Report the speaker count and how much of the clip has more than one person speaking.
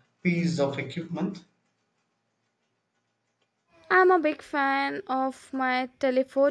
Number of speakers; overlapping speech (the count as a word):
two, no overlap